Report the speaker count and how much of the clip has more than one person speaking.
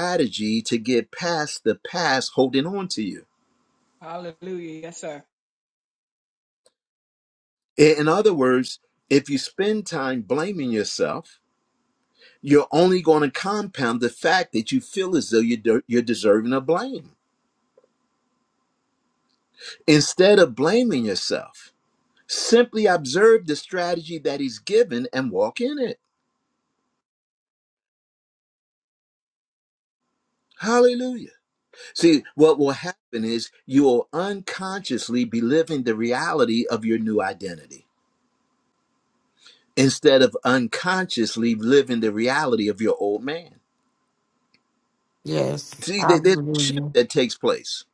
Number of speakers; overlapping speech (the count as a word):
three, about 2%